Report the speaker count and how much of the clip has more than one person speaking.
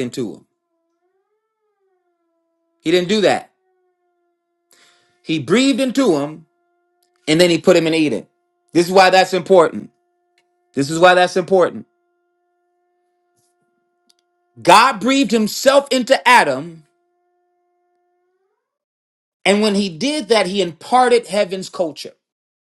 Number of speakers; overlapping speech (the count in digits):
1, no overlap